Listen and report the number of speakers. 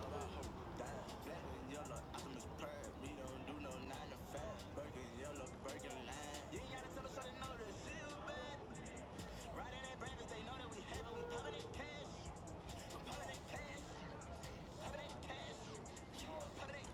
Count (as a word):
zero